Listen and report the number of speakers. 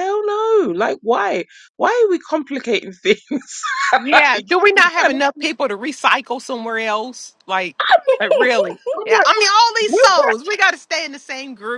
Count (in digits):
2